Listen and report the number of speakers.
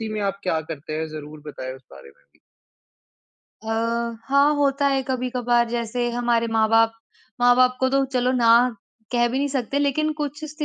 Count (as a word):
two